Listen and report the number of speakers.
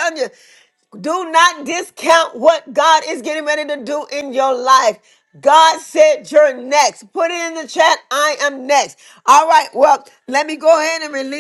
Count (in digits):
1